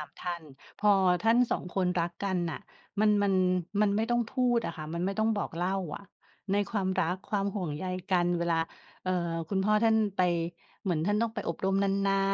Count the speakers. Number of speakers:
one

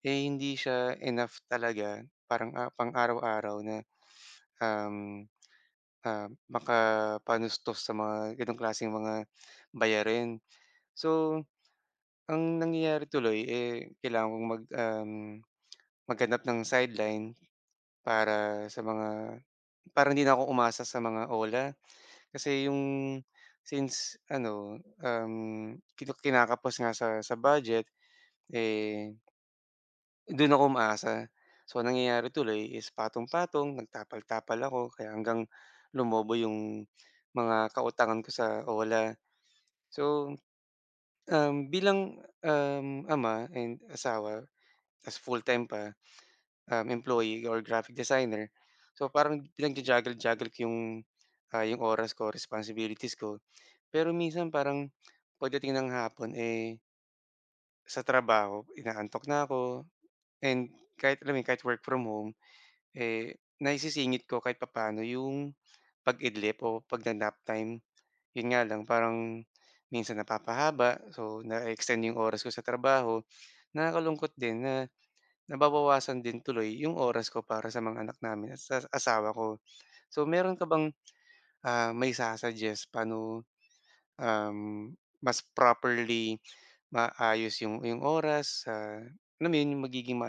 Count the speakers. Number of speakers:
one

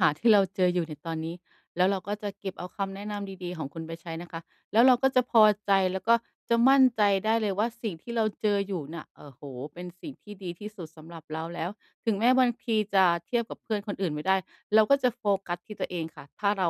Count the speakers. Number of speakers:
one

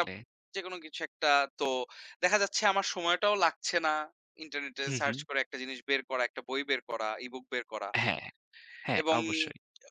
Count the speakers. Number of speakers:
two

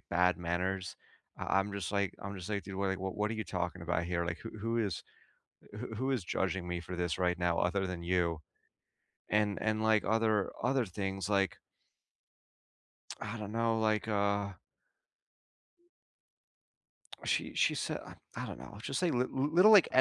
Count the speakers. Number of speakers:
one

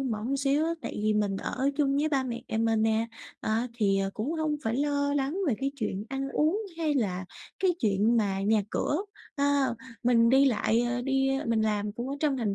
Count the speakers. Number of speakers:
one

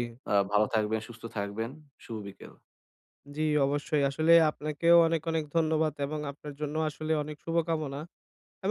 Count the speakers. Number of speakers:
two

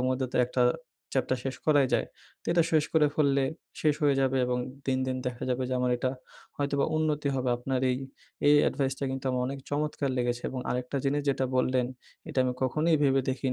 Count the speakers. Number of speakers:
one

